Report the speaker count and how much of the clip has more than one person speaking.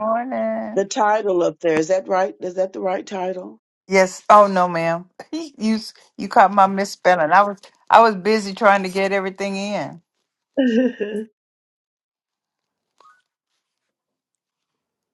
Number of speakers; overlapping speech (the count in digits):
2, under 1%